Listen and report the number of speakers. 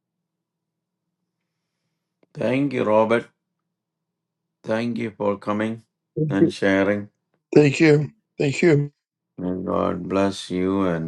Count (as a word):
two